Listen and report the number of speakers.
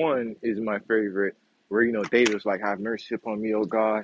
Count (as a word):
one